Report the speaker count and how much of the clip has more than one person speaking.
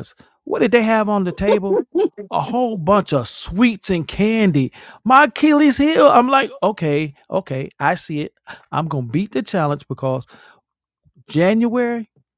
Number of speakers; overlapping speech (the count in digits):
1, no overlap